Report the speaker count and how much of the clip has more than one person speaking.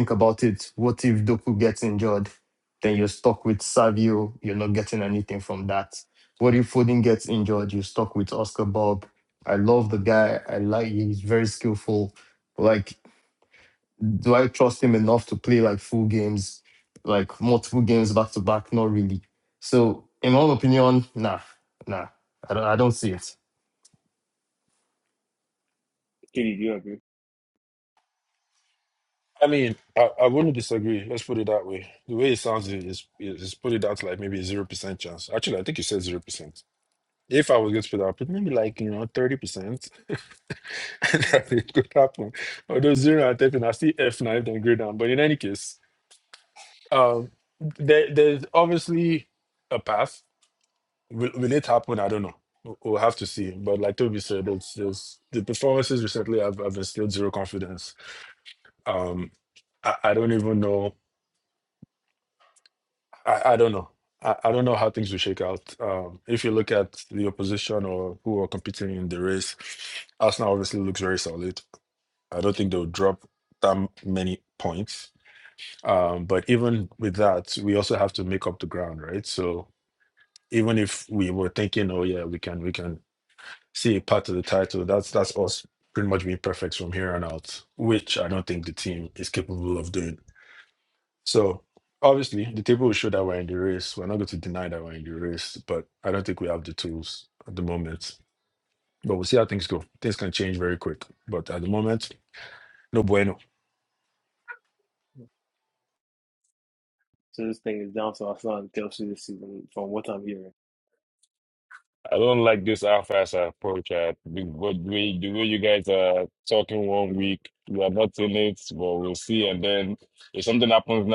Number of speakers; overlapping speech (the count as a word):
four, no overlap